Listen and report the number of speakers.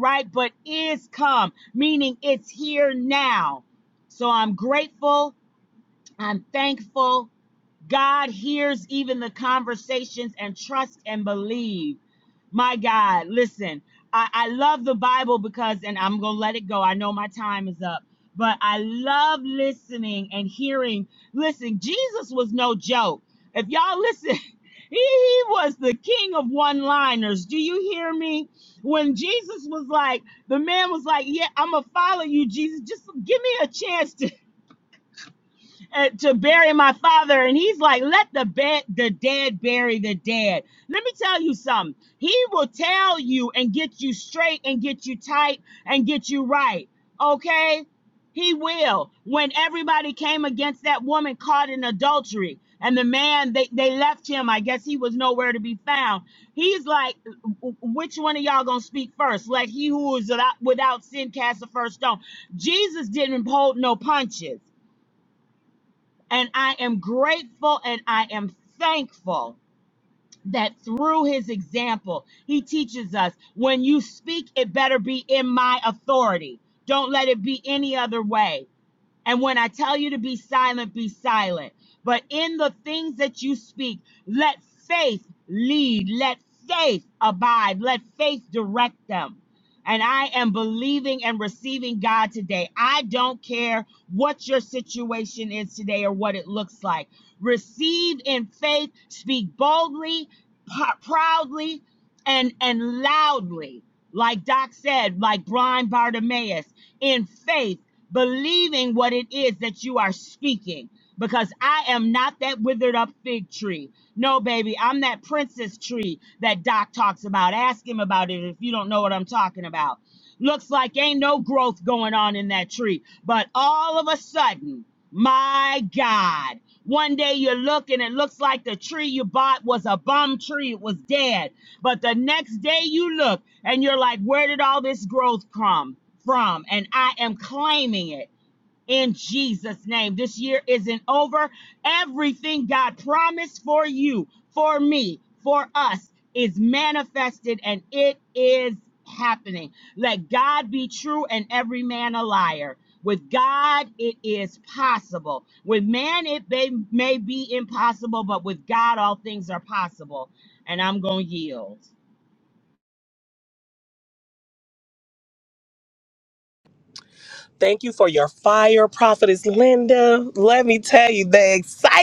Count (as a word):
two